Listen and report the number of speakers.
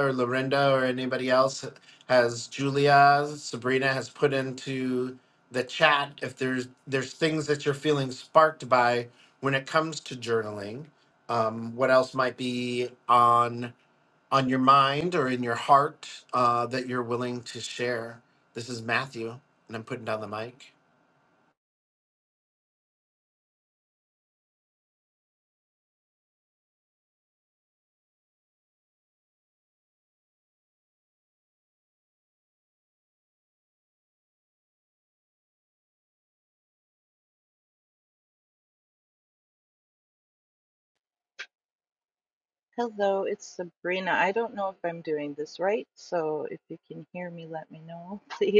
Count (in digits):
2